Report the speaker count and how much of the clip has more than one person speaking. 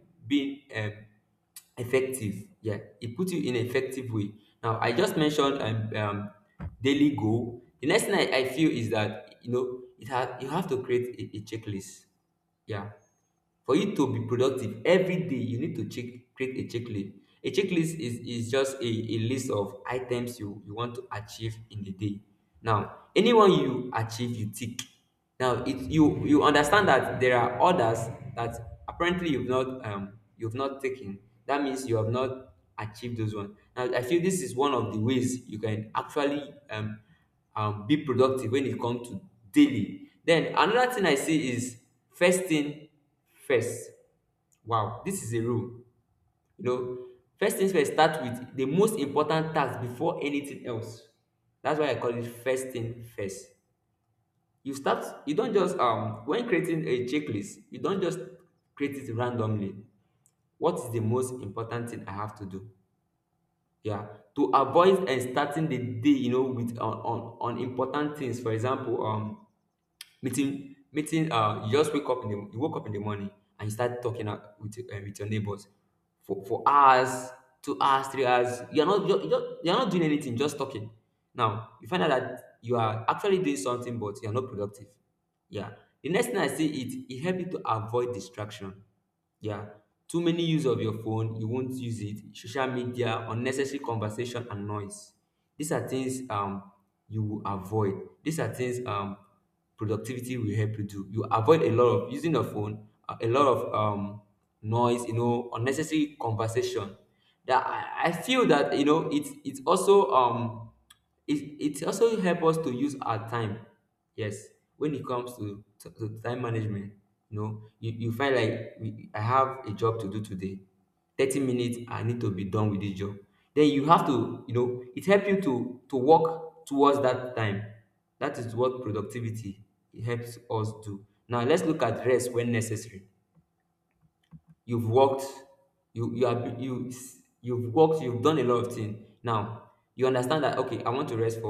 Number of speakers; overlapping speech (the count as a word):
one, no overlap